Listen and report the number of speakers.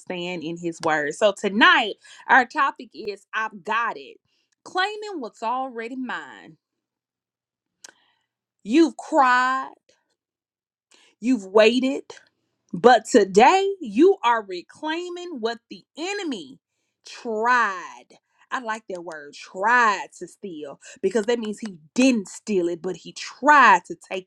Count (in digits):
1